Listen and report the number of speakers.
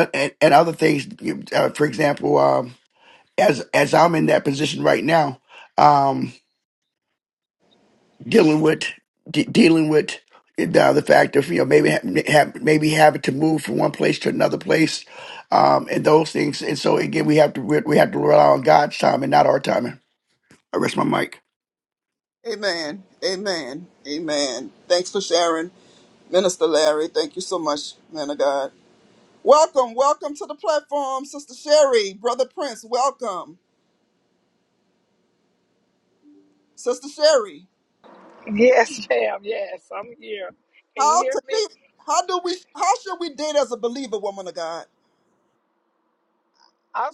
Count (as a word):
three